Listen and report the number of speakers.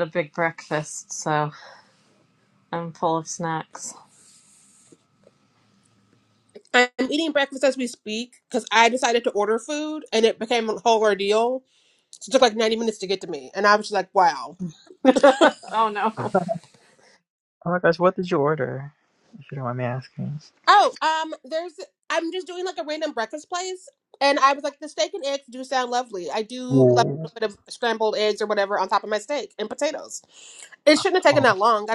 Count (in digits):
3